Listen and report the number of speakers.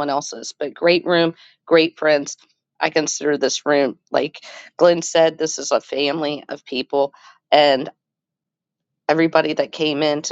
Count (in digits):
1